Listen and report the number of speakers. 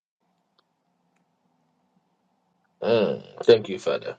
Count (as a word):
one